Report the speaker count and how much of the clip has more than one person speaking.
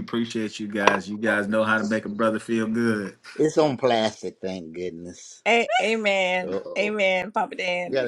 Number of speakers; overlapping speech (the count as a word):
three, about 8%